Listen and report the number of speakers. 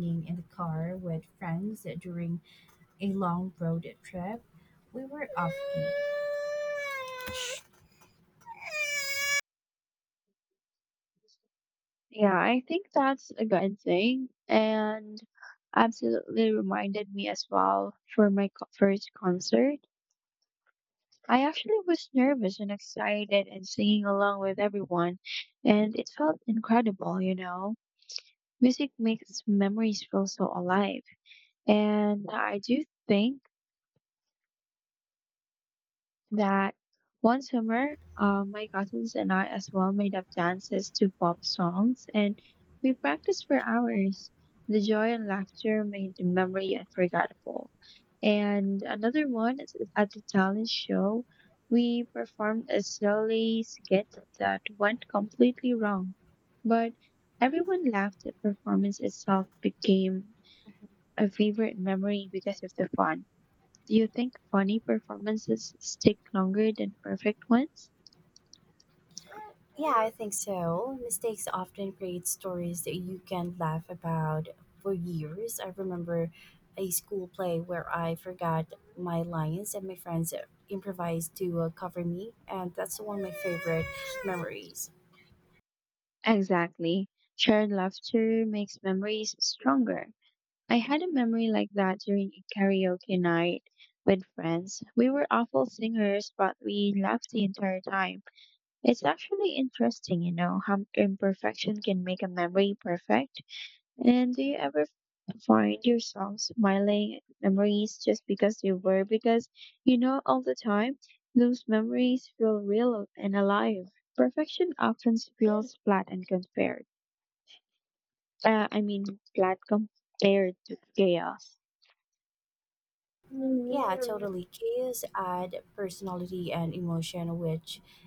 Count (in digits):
2